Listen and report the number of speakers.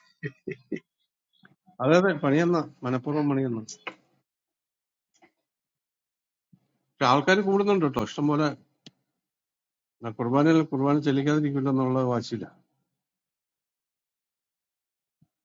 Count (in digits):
1